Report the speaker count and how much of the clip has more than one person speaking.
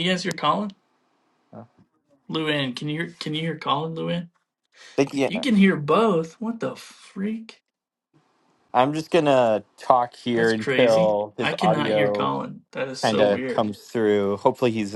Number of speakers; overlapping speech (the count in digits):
2, about 18%